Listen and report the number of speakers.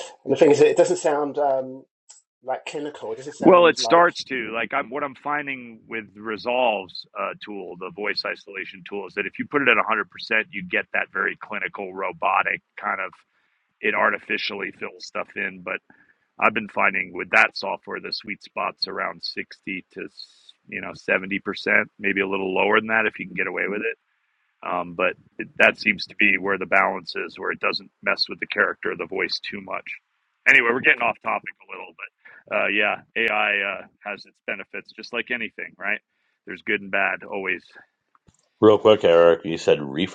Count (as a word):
three